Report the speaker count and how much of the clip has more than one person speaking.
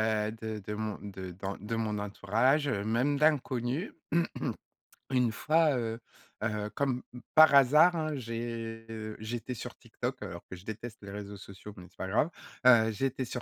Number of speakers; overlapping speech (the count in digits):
1, no overlap